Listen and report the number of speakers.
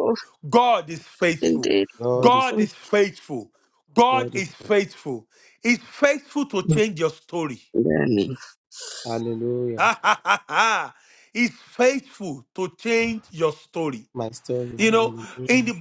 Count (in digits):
3